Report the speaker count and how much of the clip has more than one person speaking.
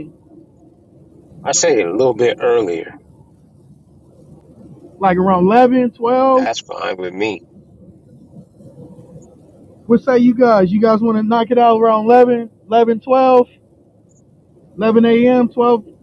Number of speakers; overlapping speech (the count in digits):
2, about 1%